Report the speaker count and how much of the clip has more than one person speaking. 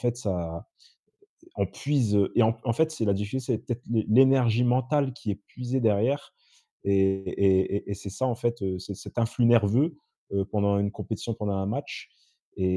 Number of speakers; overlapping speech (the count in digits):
1, no overlap